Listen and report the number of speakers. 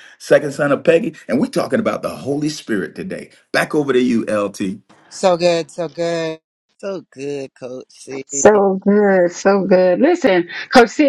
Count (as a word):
four